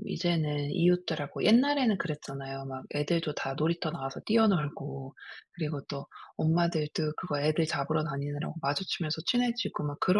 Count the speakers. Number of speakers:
one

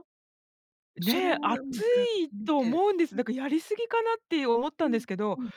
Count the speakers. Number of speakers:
two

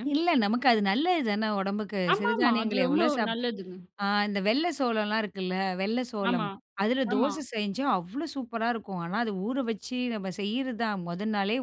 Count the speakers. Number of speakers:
two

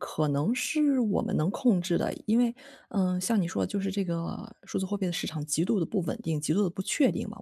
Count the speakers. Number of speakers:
one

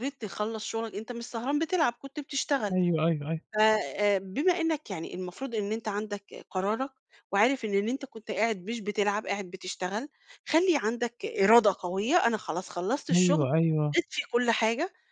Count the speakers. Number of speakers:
two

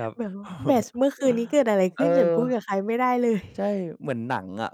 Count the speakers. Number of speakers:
two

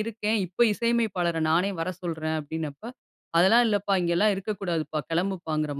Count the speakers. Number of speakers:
one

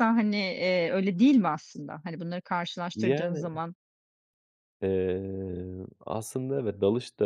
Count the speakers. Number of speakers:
two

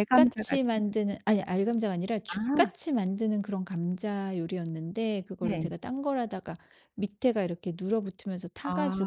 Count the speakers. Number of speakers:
two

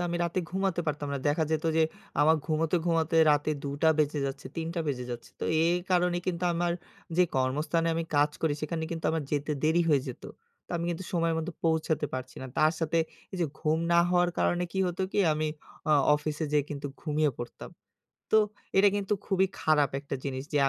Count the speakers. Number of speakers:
one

